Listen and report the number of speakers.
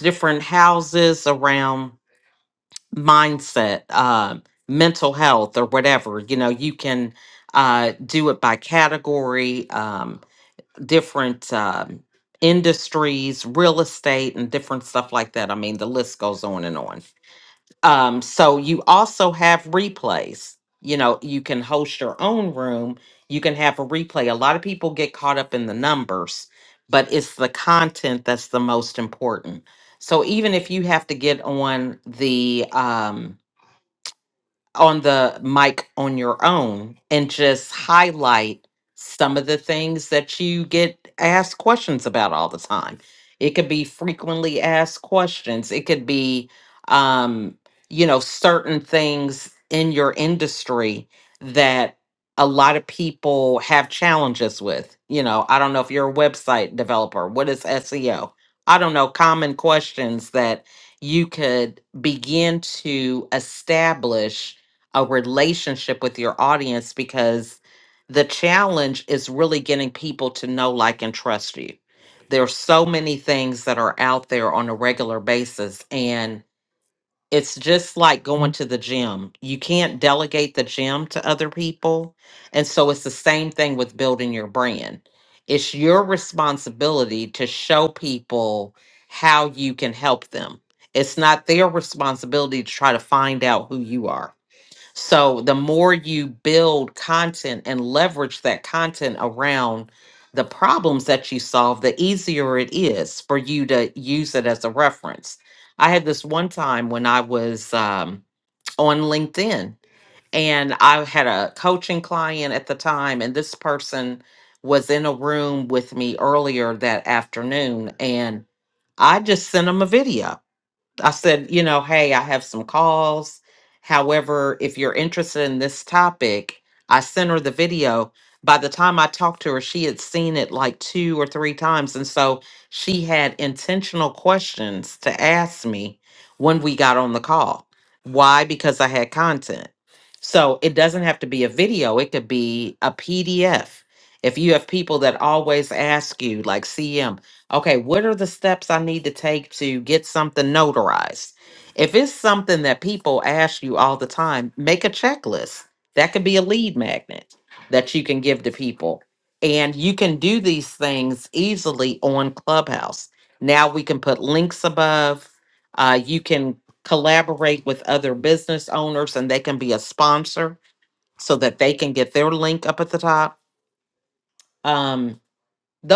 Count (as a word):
one